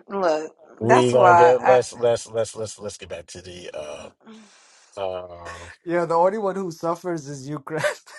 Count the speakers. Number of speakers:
3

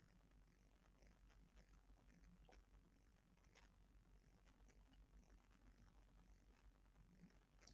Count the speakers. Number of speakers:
0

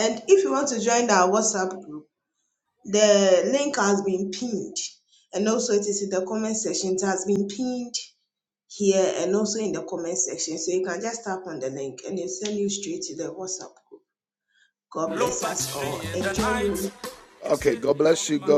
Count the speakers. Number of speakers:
2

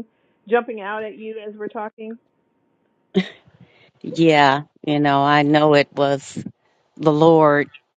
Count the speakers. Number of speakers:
2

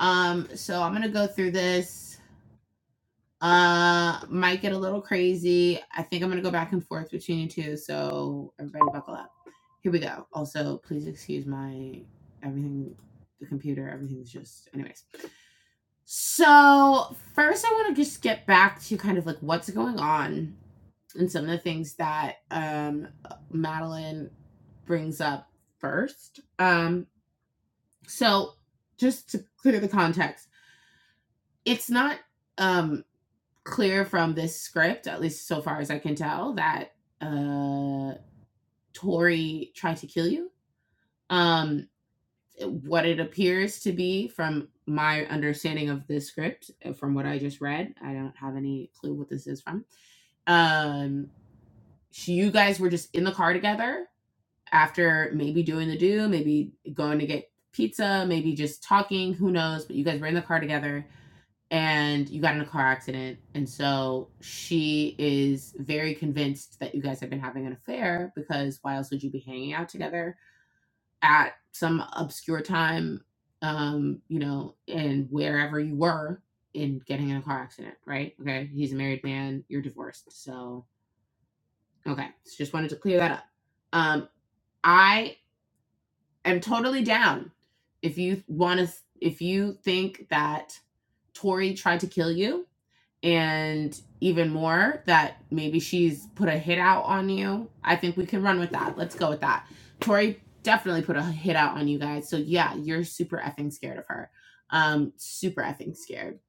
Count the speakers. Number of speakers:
1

